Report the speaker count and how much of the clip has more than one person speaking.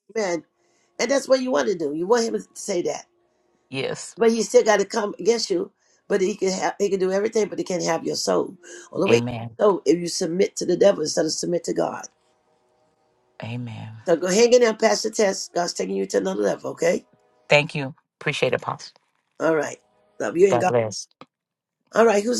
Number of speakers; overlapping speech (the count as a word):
two, about 2%